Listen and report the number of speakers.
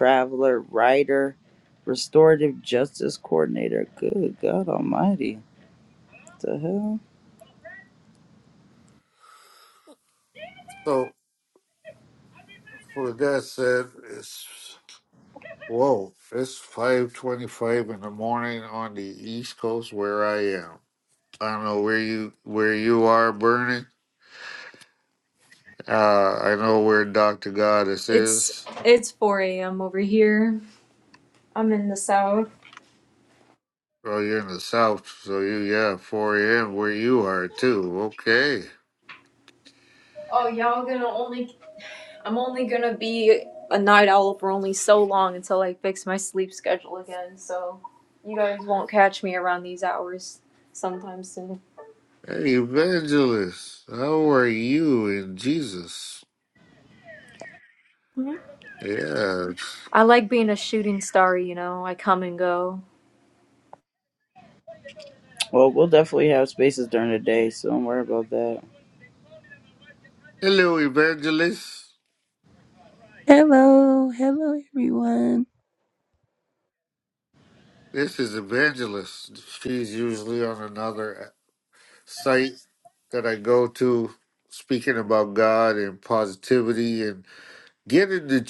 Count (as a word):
four